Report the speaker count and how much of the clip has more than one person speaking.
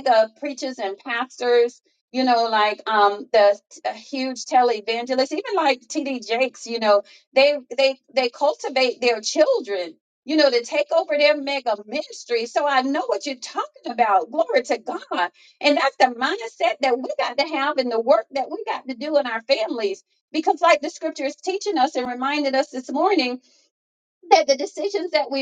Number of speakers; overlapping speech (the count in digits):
1, no overlap